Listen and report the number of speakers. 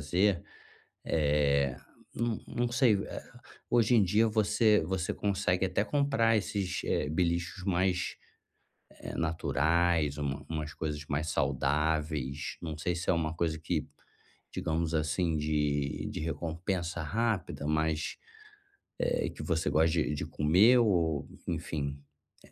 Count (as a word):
one